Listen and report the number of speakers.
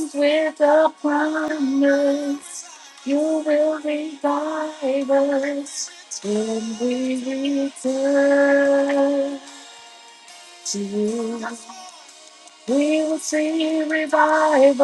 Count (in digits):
1